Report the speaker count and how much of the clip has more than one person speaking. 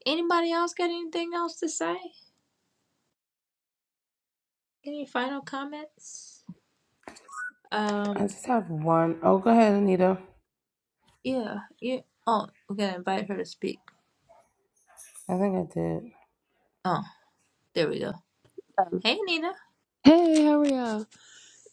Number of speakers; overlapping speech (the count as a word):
three, under 1%